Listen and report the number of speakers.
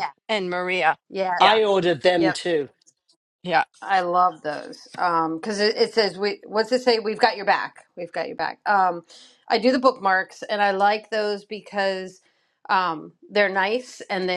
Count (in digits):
3